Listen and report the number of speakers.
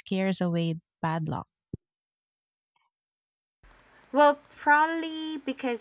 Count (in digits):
2